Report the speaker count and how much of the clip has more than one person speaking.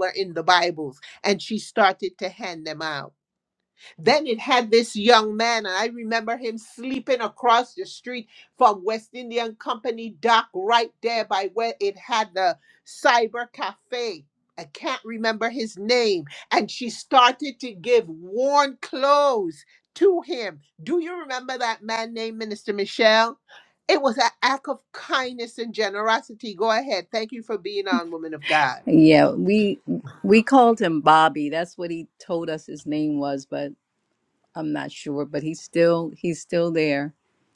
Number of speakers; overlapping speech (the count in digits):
2, no overlap